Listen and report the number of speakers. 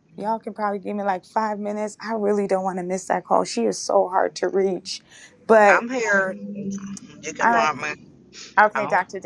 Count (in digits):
2